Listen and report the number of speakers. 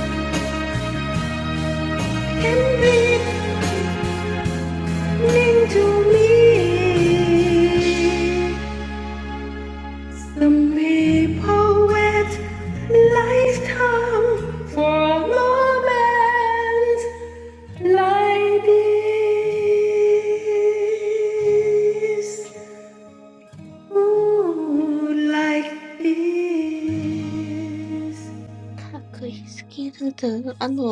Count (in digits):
2